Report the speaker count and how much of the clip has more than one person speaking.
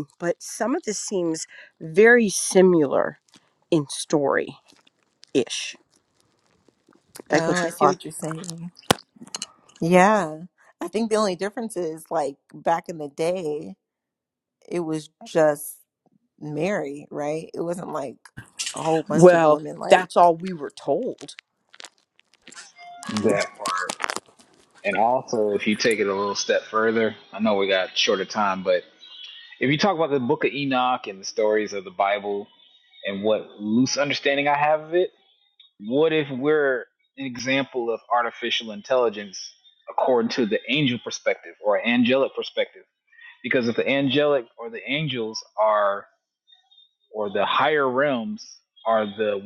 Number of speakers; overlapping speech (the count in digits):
3, about 3%